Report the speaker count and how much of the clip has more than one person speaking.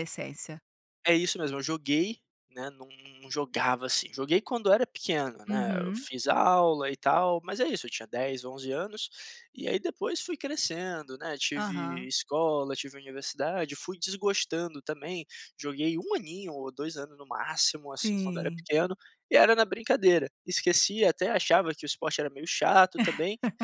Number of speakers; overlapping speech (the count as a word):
two, about 7%